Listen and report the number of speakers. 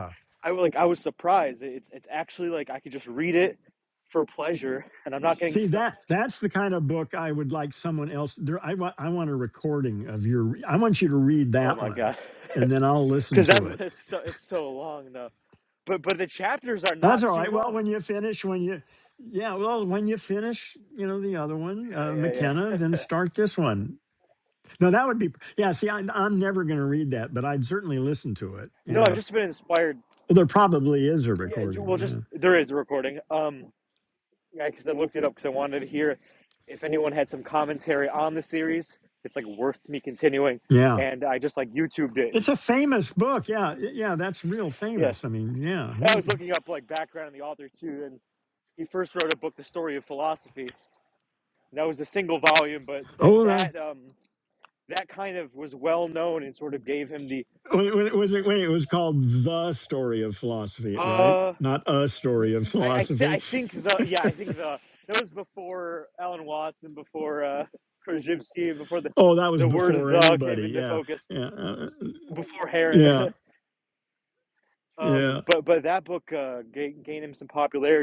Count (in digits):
2